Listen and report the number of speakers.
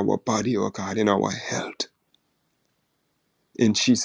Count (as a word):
one